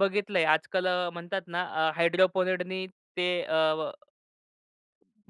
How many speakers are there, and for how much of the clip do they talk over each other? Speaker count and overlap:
1, no overlap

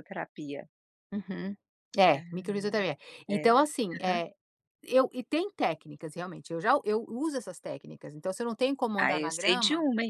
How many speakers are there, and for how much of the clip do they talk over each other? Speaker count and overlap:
2, about 13%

